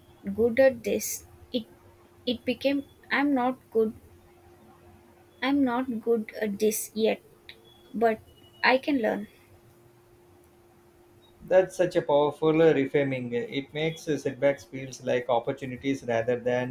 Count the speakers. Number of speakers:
2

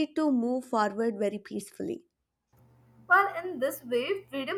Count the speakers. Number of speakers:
2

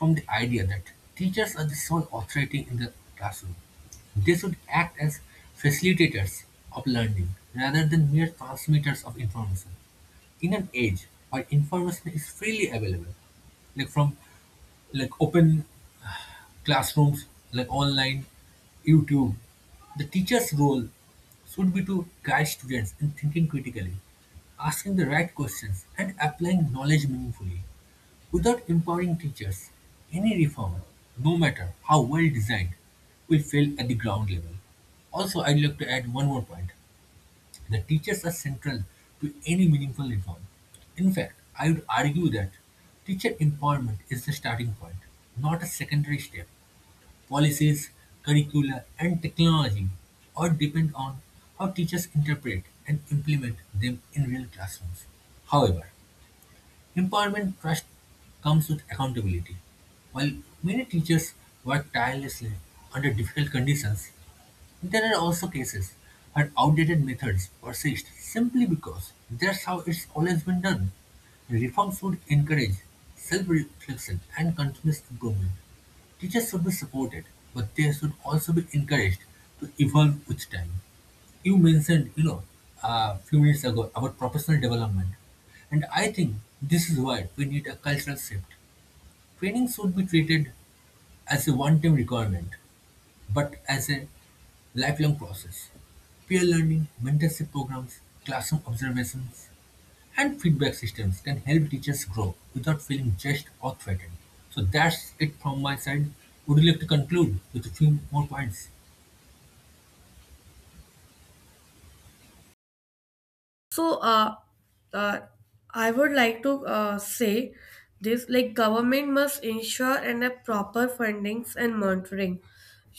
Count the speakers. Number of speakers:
2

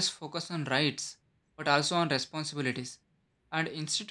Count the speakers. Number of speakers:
1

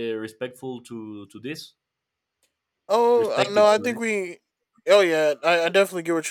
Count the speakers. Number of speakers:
2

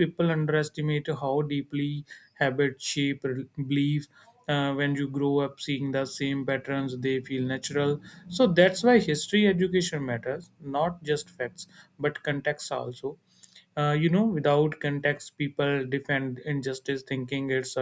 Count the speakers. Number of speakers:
1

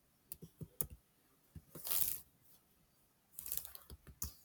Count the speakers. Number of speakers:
0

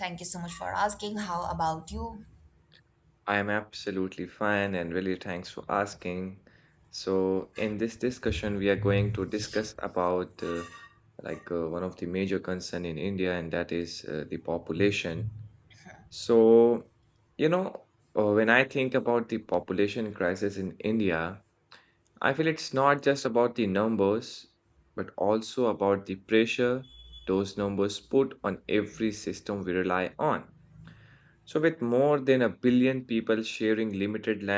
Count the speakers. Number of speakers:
2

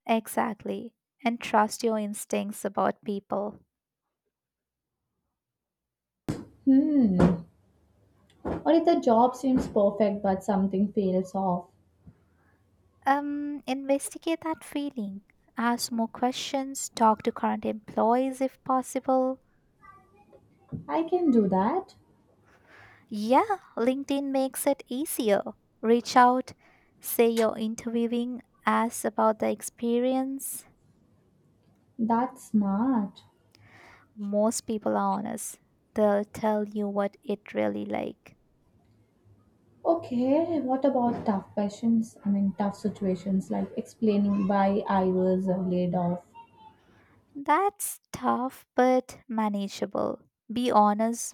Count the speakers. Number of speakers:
2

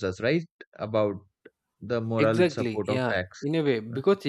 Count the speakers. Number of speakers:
2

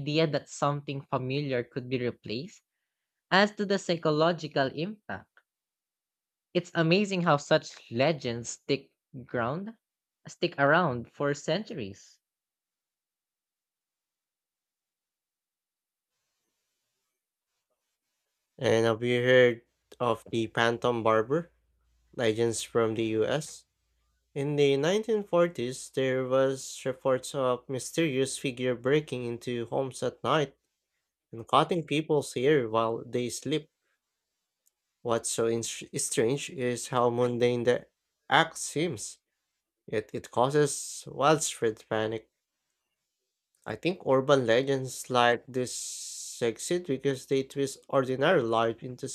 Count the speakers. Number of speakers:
2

